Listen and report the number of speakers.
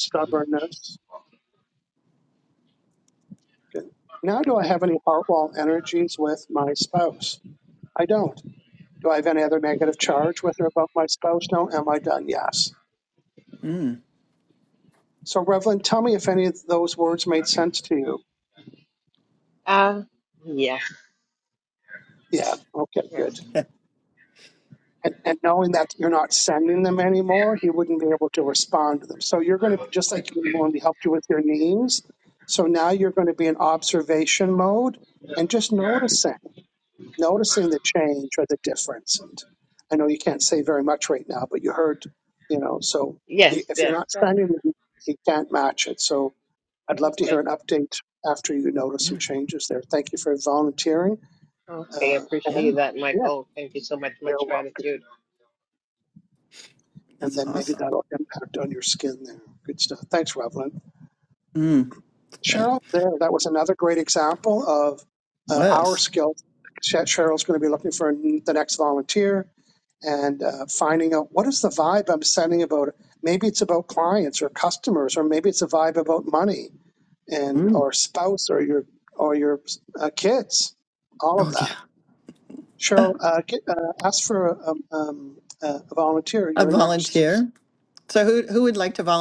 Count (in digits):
3